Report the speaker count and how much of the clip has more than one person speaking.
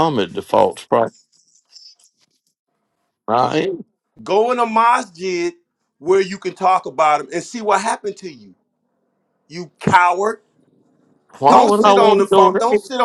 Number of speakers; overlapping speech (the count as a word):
two, about 10%